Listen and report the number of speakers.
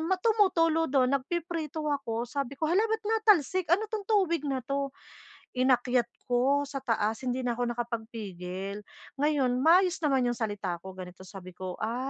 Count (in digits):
1